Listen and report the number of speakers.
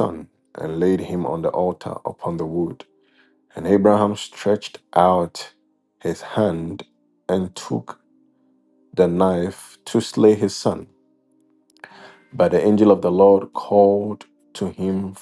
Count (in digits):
1